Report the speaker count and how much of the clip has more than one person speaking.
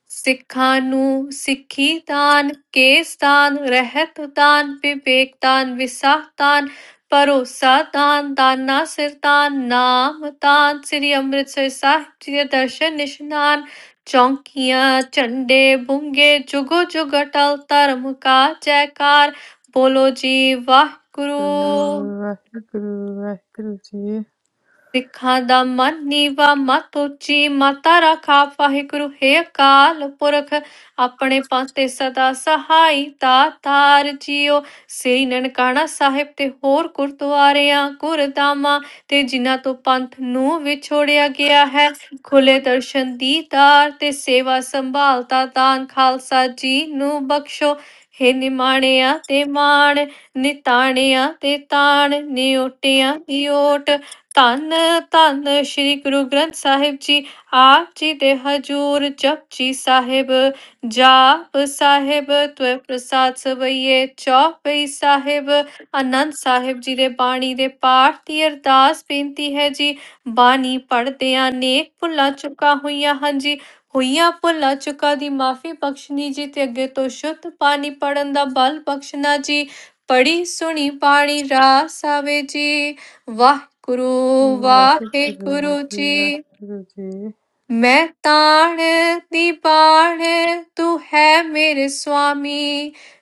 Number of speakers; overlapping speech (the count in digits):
2, about 2%